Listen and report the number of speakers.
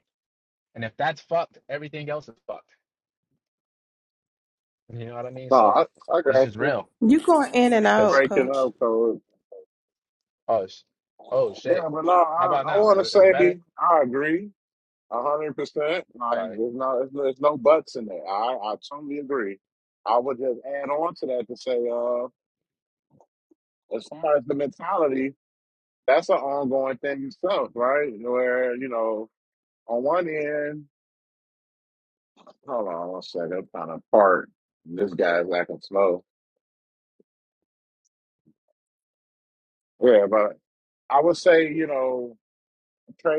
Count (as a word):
three